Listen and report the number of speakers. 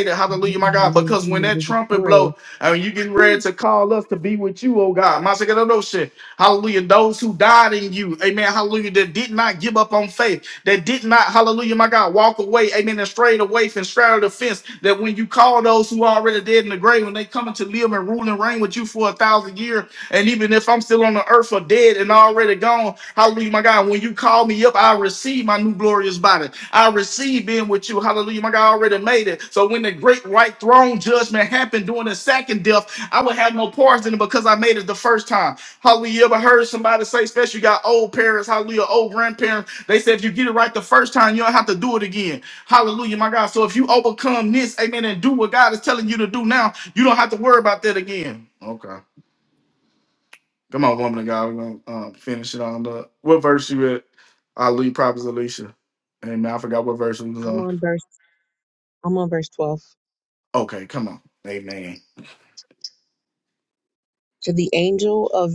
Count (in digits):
2